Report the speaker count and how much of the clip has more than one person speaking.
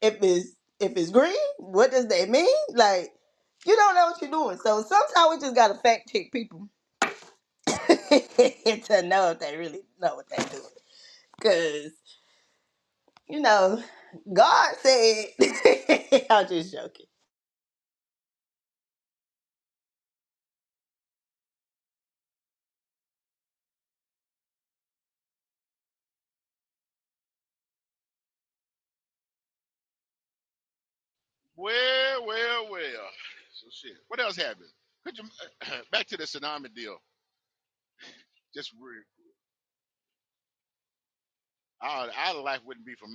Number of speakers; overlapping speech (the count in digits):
2, no overlap